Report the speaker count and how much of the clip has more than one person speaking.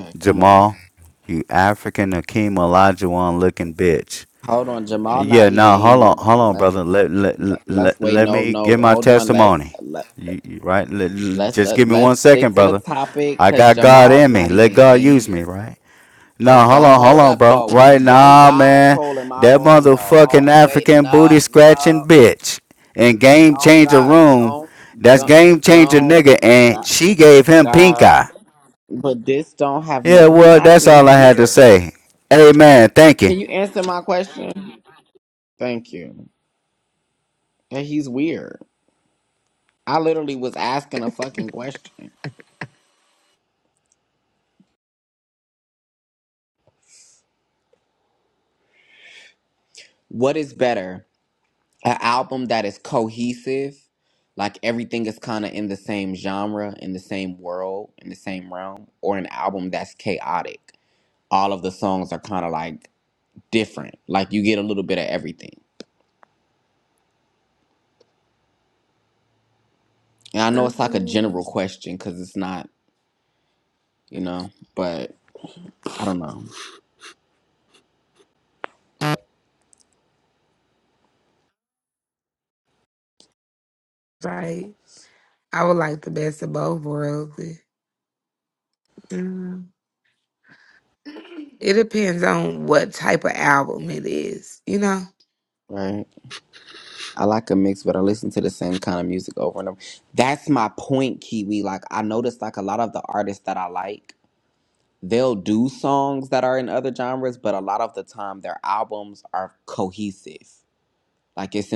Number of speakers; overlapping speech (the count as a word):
three, about 16%